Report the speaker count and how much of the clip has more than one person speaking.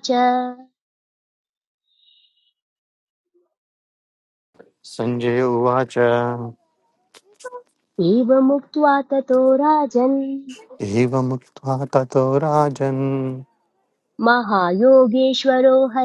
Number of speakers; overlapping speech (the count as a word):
two, no overlap